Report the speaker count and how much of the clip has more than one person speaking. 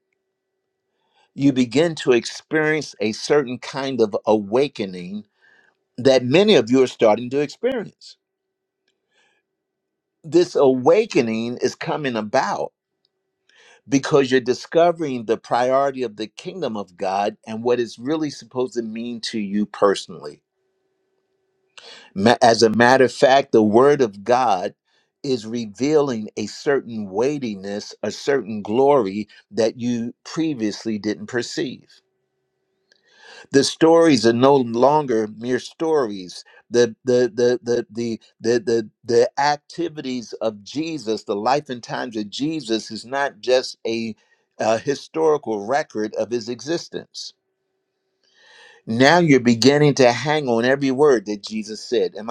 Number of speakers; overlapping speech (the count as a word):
one, no overlap